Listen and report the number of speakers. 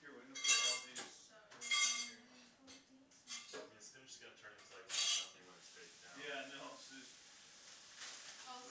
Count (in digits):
3